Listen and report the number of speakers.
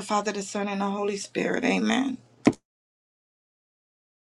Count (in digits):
1